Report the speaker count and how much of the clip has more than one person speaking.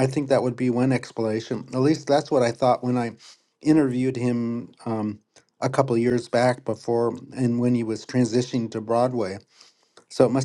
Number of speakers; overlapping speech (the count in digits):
1, no overlap